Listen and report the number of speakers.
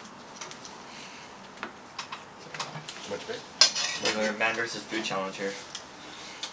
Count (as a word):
two